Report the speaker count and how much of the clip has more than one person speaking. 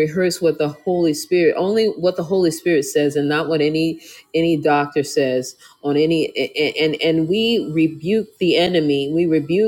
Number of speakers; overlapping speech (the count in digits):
1, no overlap